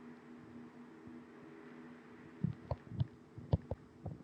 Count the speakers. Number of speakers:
0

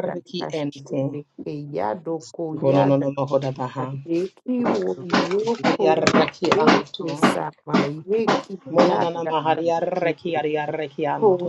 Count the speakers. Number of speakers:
2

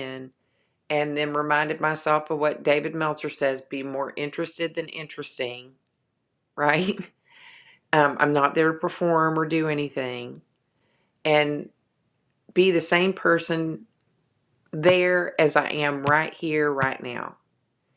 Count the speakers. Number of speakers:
1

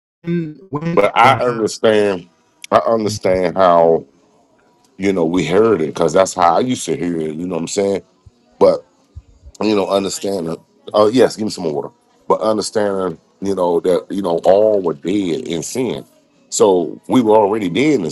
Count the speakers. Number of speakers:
2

